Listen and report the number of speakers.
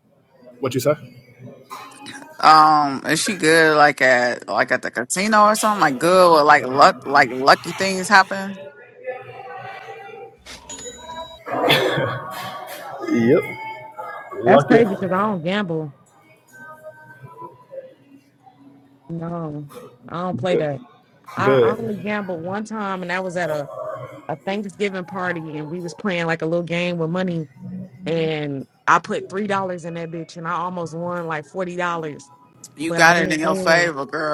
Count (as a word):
three